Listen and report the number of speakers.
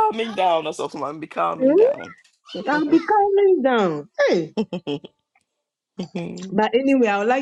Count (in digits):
2